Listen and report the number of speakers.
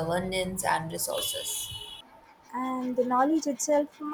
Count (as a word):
two